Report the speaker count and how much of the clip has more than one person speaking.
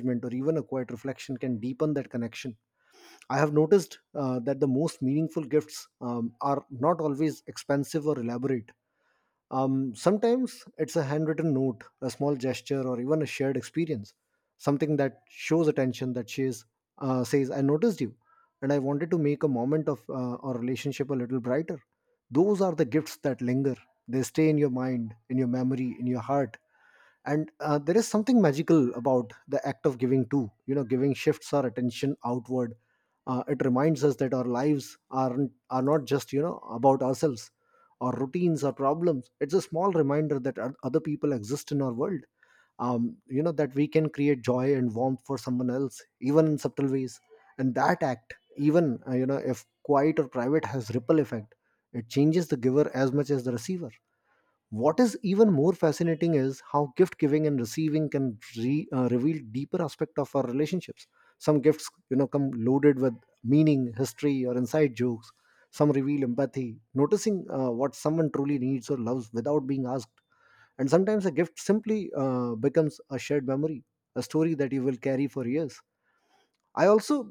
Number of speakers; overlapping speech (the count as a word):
one, no overlap